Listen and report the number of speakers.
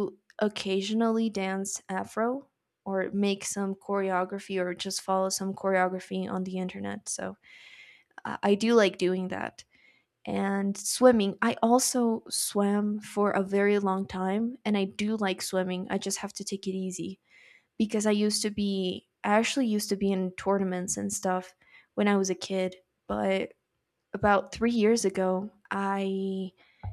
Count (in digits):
1